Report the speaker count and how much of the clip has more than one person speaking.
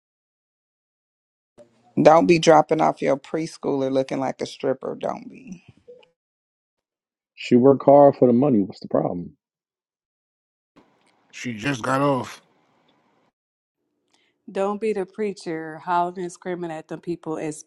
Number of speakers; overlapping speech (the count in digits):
4, no overlap